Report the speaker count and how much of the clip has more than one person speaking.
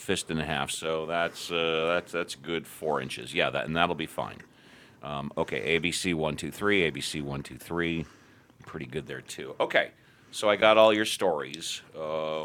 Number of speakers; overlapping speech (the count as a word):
one, no overlap